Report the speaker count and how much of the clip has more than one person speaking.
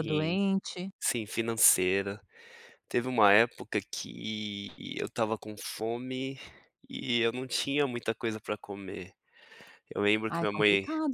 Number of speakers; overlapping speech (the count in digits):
2, about 9%